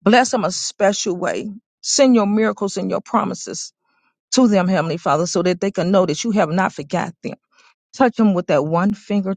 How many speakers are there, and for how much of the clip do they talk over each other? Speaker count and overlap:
one, no overlap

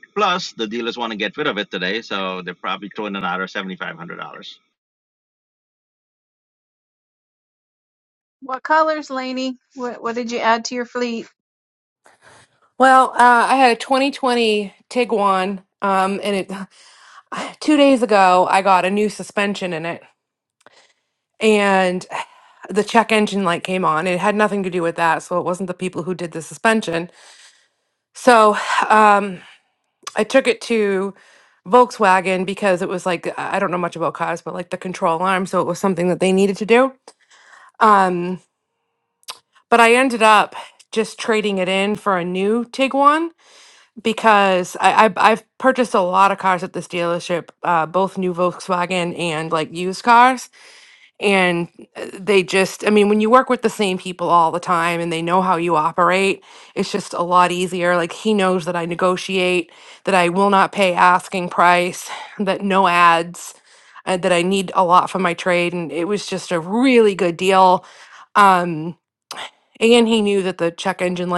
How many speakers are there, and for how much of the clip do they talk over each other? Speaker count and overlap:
three, no overlap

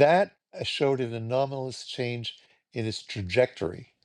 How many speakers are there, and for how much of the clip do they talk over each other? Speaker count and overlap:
one, no overlap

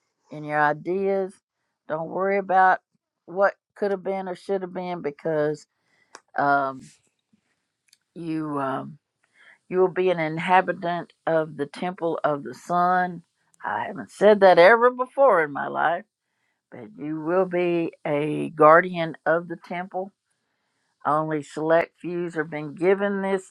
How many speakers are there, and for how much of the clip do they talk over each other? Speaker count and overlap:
one, no overlap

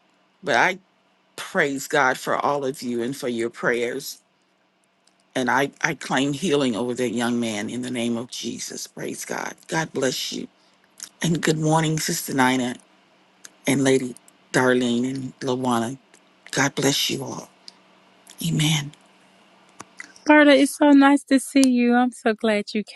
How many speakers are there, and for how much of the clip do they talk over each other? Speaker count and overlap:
two, no overlap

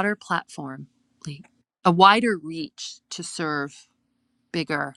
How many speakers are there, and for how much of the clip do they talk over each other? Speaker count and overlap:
one, no overlap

